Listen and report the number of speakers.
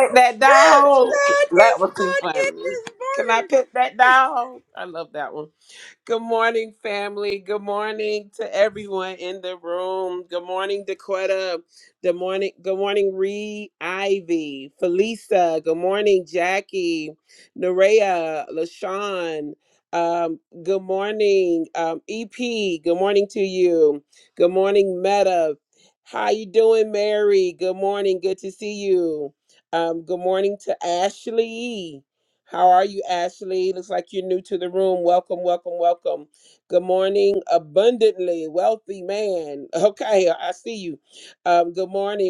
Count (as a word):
two